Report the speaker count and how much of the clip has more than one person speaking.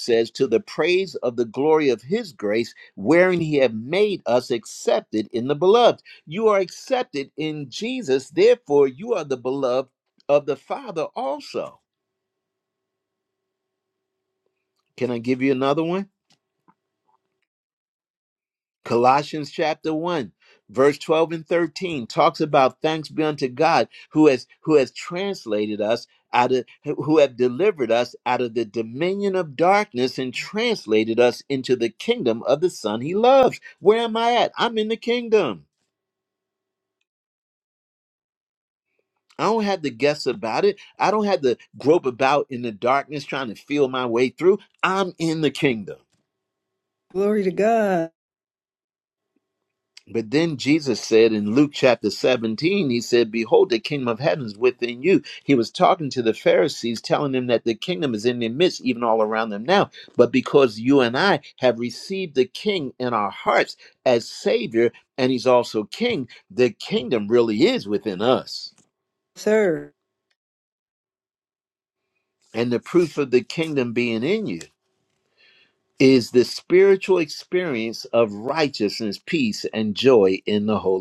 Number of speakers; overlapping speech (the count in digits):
2, no overlap